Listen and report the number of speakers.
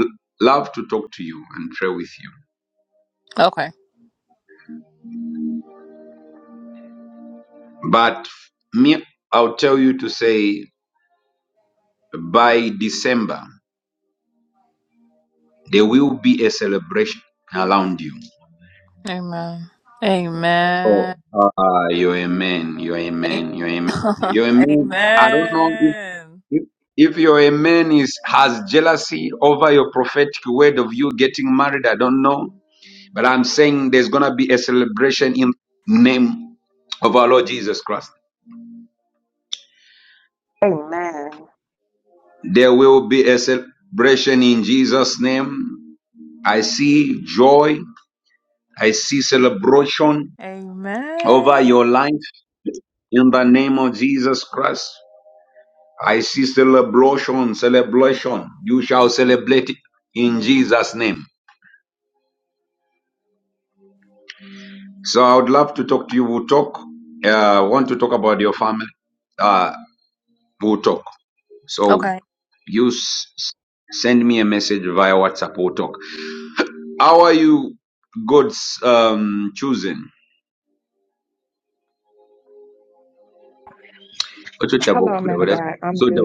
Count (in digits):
3